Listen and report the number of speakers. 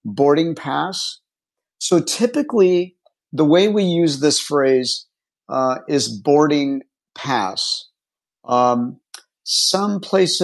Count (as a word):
one